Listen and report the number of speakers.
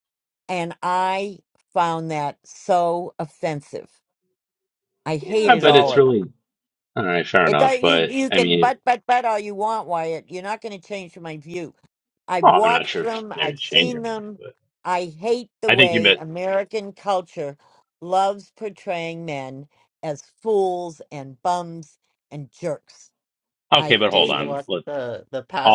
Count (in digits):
3